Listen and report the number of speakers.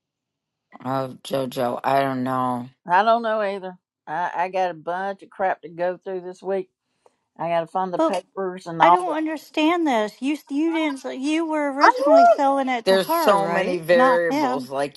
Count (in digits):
3